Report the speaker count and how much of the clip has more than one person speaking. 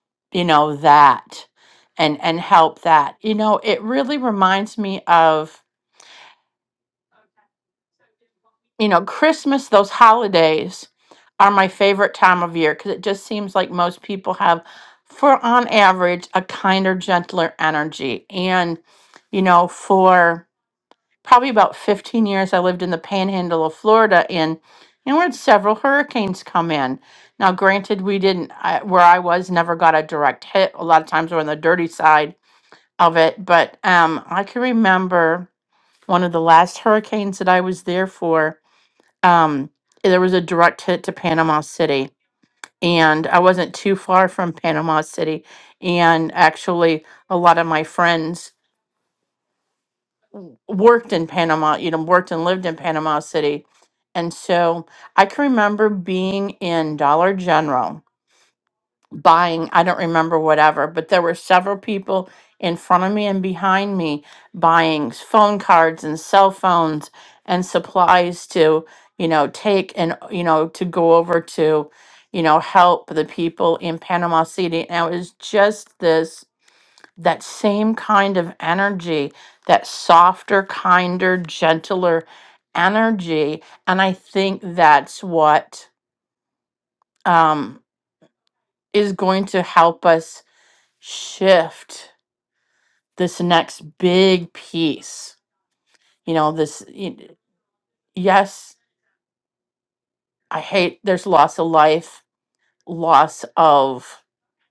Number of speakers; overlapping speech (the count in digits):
1, no overlap